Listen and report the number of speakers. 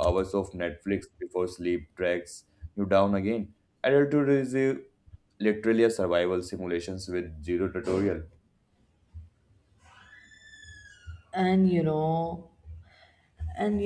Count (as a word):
two